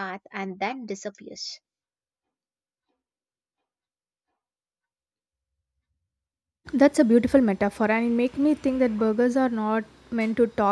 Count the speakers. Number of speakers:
two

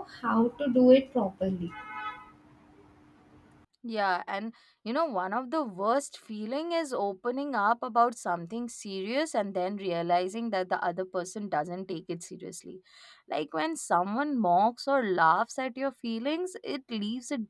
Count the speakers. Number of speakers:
two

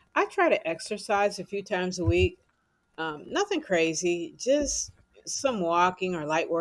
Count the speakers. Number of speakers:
one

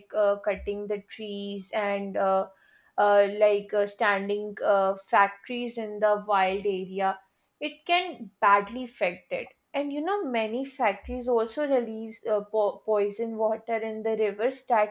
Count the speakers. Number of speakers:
one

